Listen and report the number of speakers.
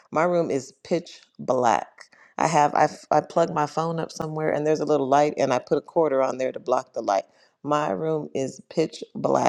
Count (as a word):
one